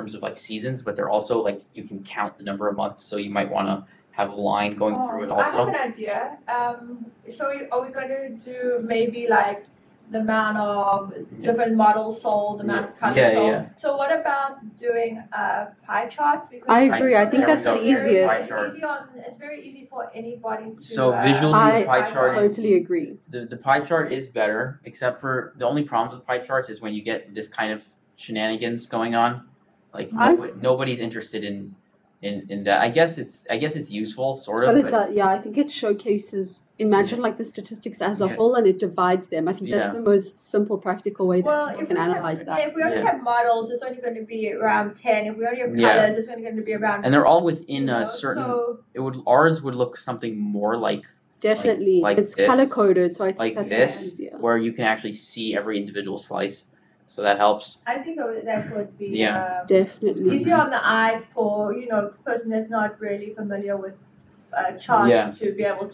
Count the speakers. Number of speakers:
3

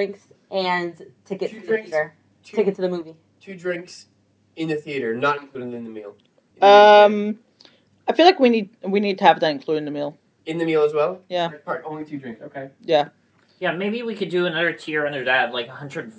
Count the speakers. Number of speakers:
4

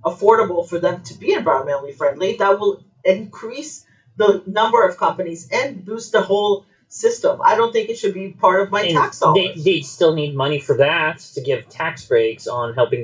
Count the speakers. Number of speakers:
2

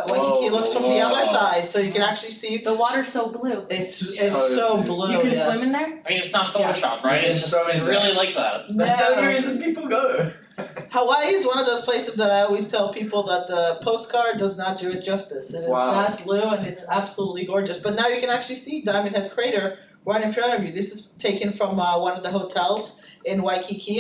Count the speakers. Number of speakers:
4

